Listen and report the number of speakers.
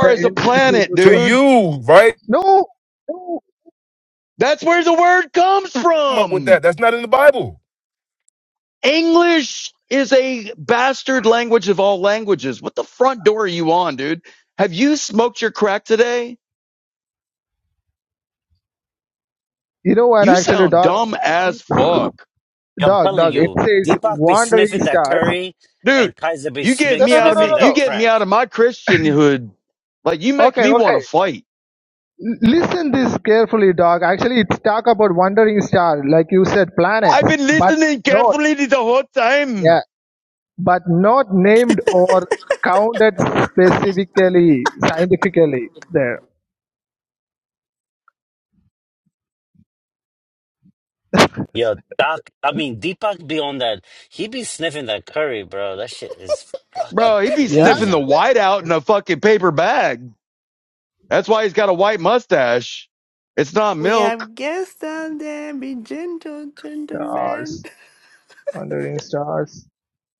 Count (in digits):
5